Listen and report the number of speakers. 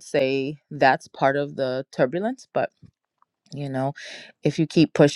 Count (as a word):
one